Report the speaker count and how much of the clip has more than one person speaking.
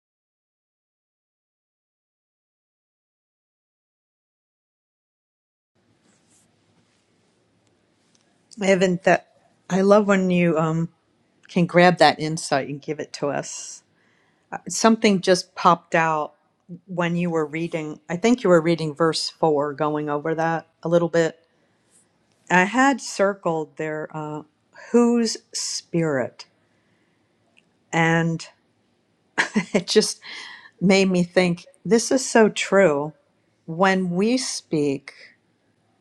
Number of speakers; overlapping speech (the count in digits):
1, no overlap